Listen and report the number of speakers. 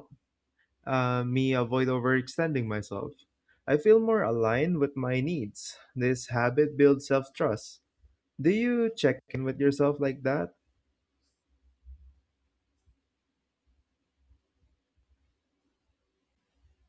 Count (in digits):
1